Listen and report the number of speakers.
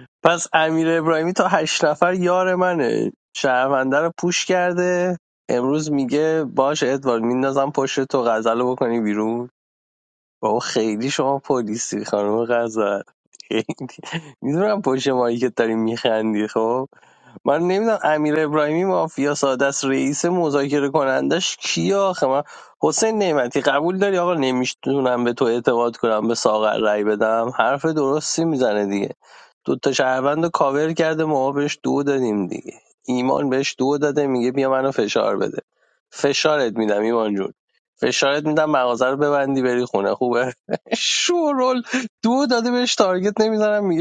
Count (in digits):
1